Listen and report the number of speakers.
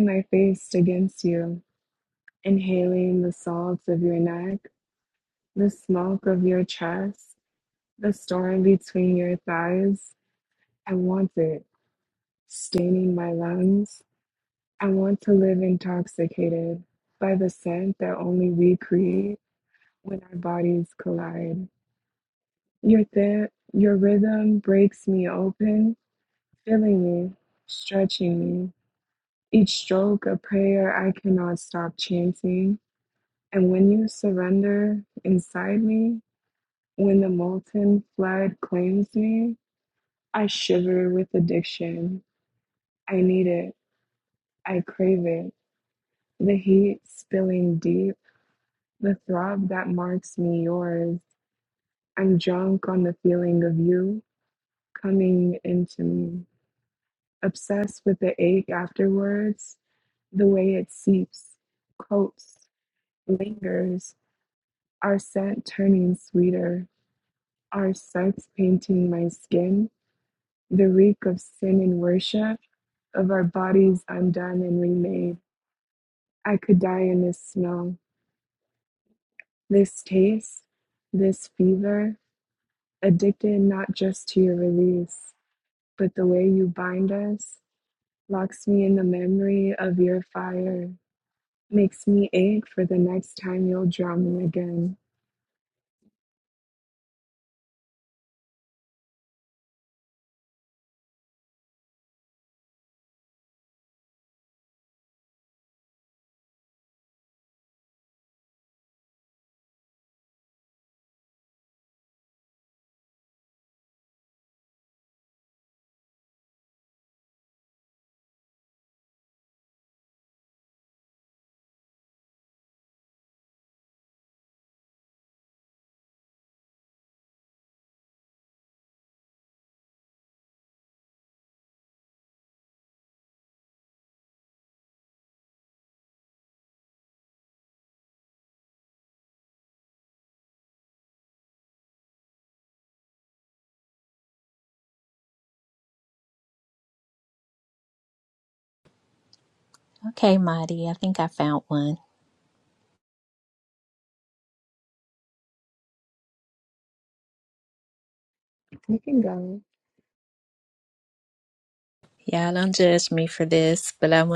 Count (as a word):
two